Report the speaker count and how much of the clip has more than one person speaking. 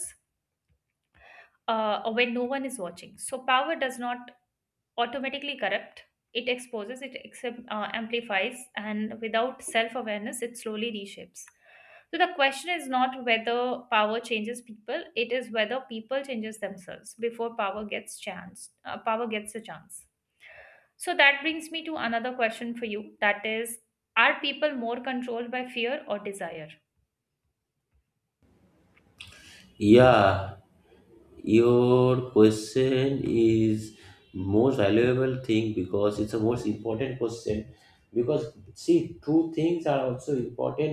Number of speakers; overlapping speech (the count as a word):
two, no overlap